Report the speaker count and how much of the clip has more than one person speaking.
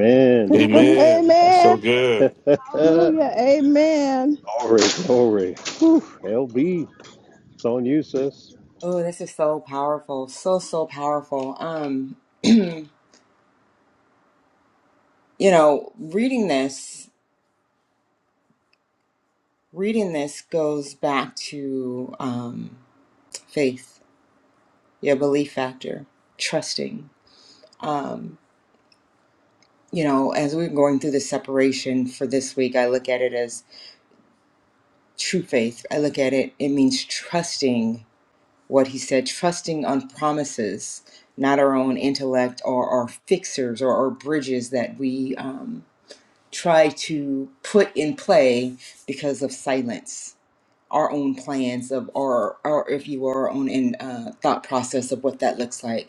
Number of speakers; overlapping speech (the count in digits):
4, about 3%